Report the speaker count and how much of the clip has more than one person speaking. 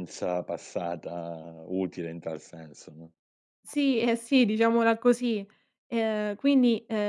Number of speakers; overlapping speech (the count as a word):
two, no overlap